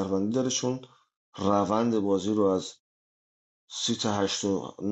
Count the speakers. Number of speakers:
1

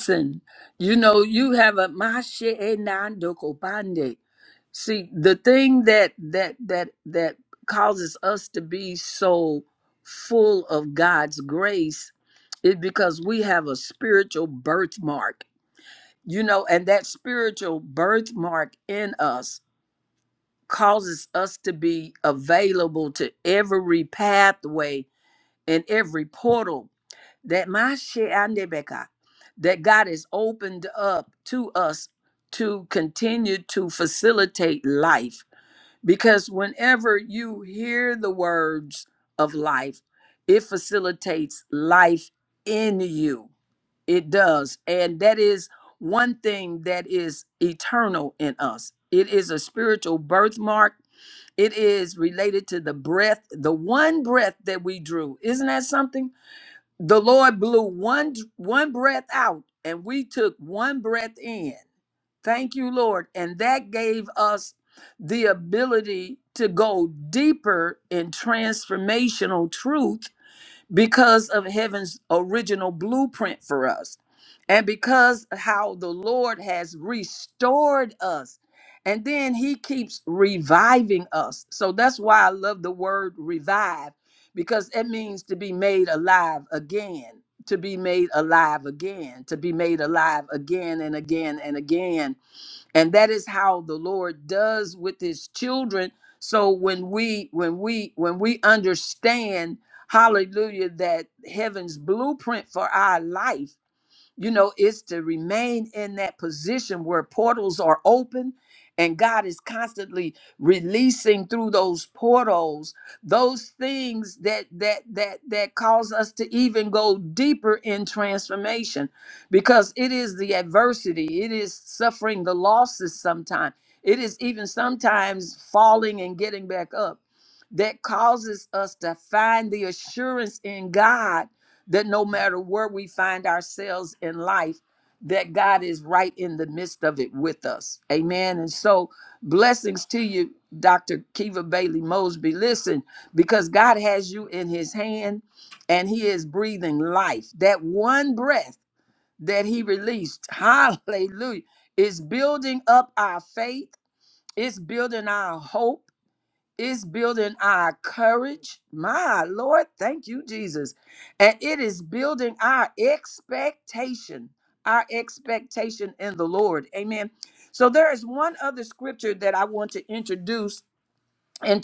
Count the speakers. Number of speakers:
1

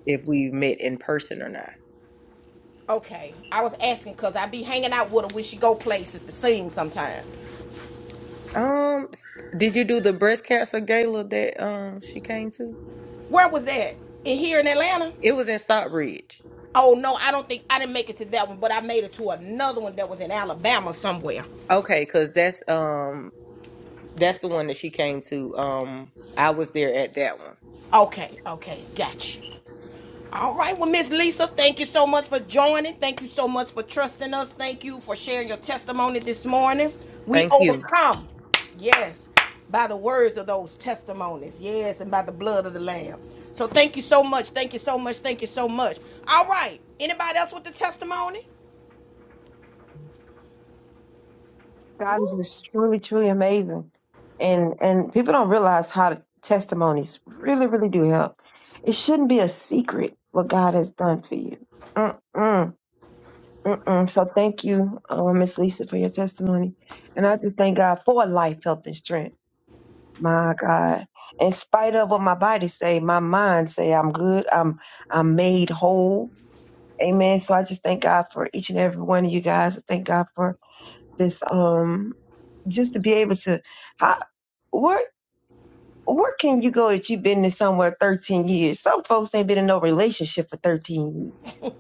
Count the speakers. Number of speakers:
3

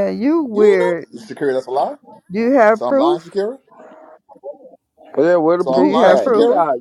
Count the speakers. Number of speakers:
3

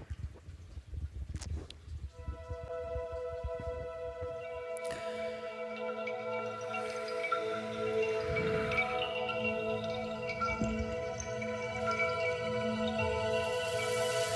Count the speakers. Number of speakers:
0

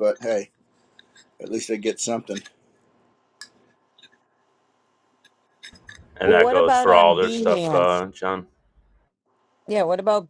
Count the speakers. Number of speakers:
3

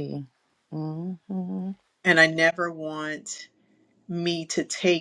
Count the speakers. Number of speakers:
2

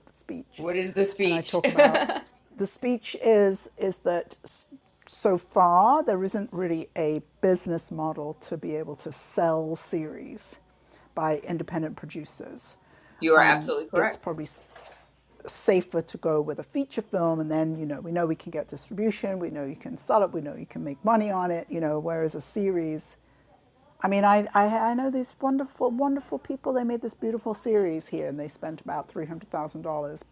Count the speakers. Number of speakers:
2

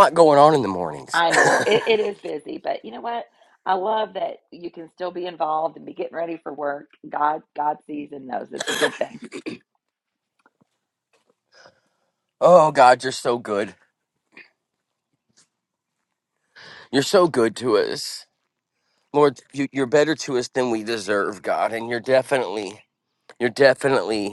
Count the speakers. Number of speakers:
2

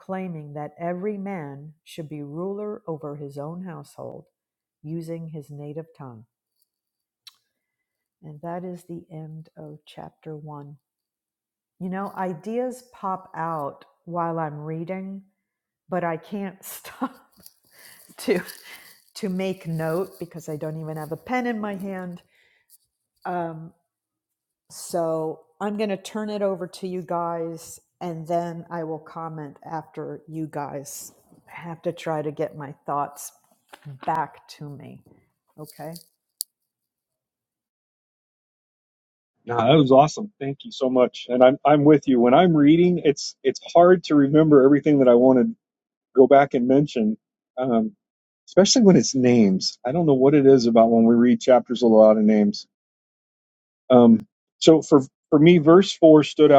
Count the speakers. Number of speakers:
2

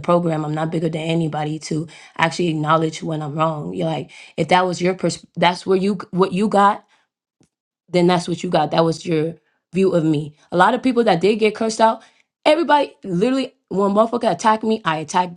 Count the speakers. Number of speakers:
1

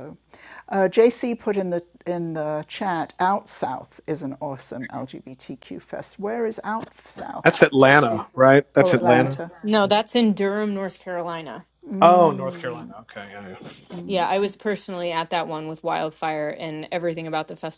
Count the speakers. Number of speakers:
3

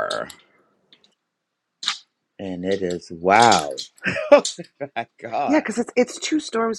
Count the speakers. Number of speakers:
2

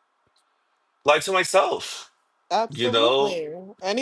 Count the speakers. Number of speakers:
2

